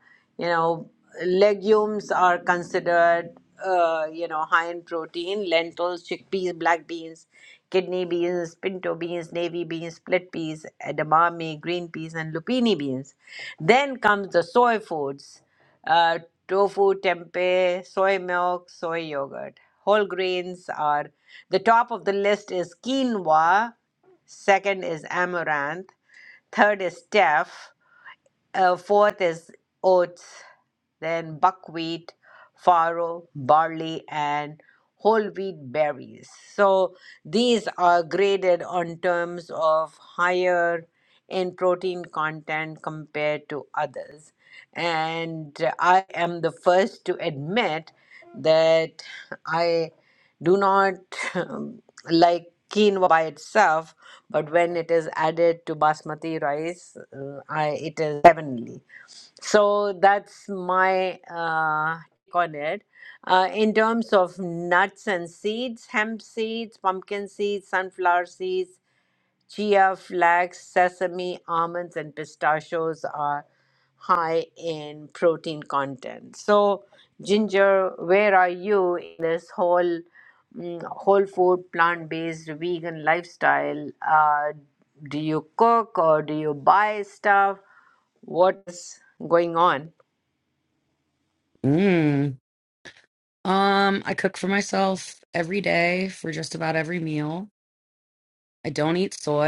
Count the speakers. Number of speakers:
2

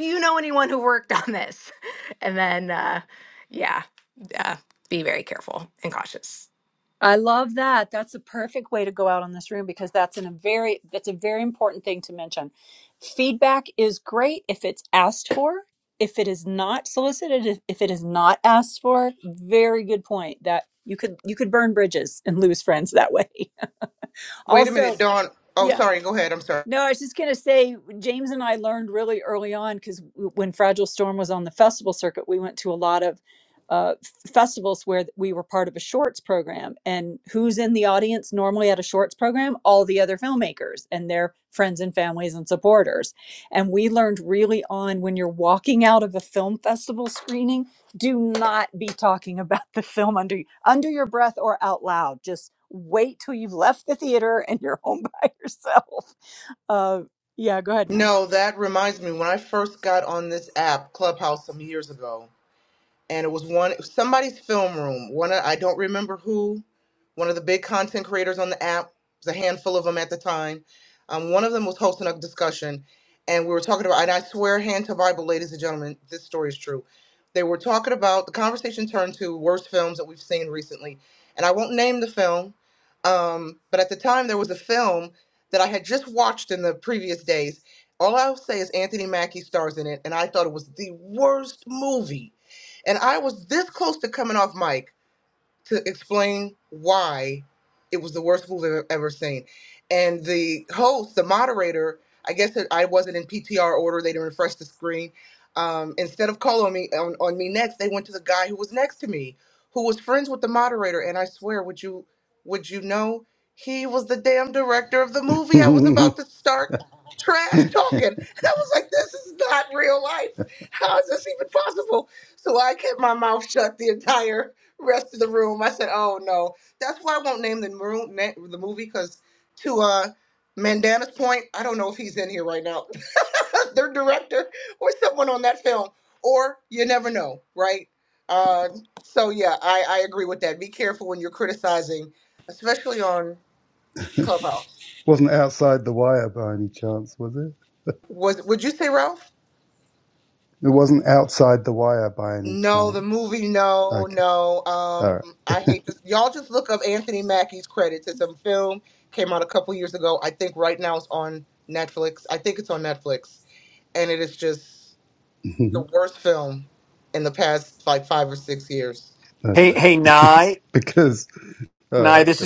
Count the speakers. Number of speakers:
5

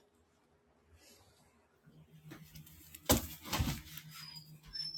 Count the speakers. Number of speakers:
0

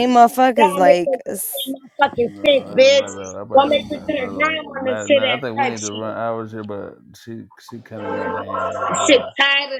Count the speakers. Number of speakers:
3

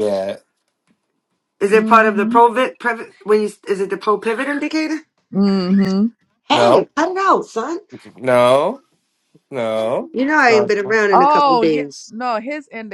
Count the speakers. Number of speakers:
3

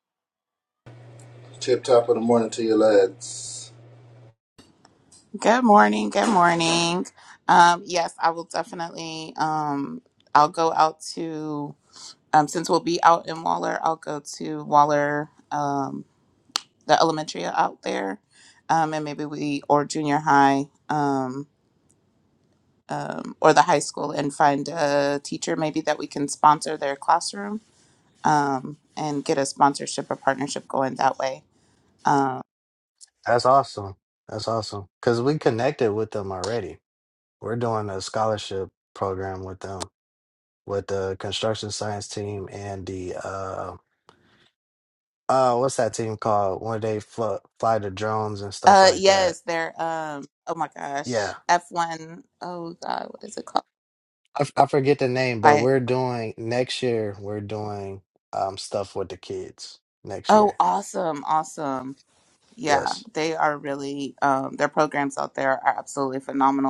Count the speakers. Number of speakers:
3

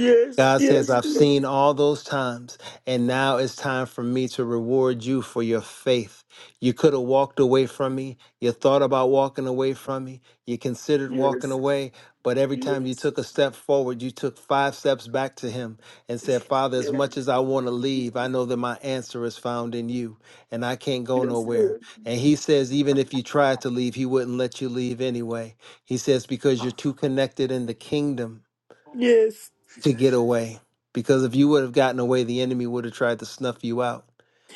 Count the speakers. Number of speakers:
2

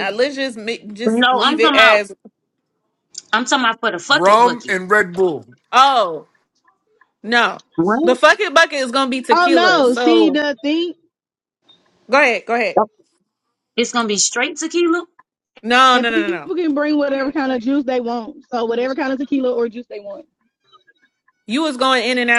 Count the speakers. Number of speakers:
4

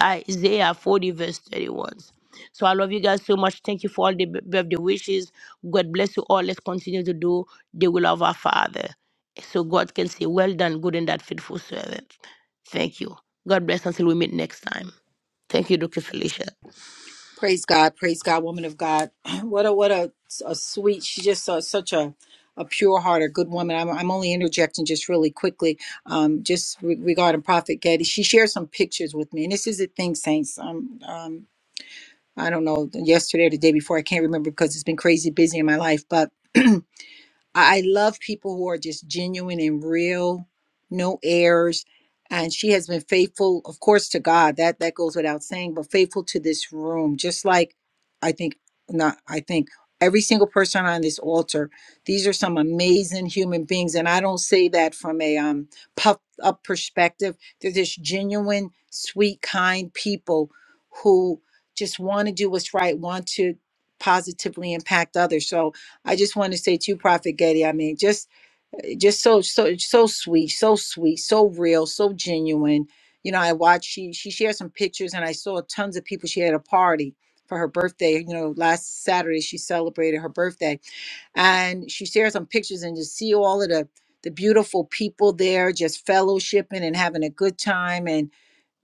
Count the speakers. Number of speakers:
2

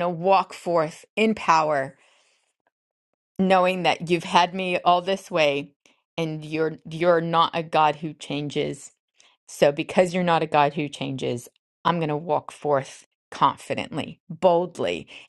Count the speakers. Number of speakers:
1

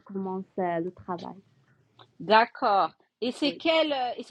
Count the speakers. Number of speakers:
2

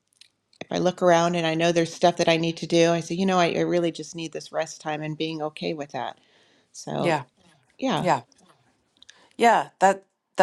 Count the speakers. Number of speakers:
2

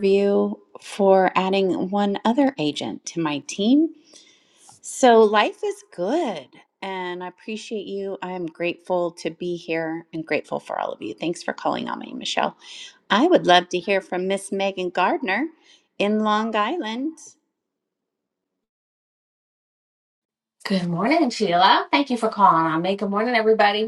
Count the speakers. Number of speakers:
2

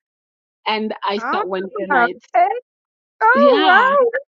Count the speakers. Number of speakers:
2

